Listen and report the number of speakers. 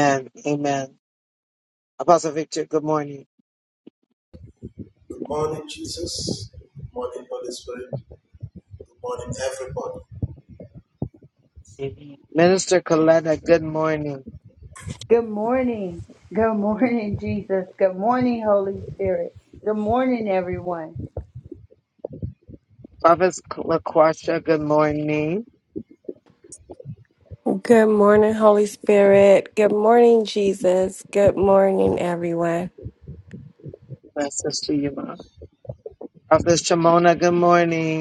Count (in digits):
4